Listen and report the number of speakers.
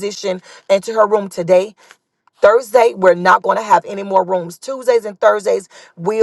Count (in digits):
1